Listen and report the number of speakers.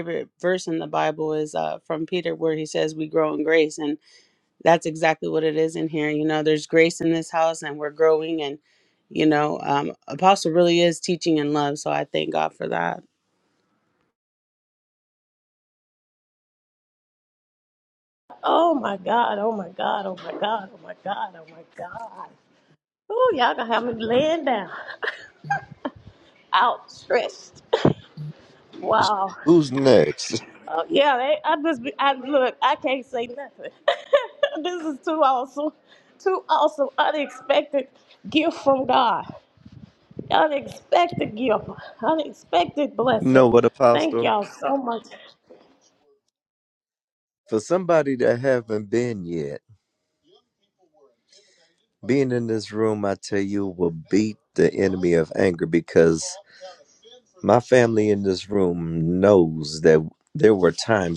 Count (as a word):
three